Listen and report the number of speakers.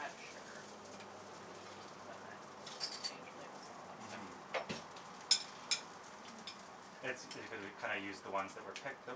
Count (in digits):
2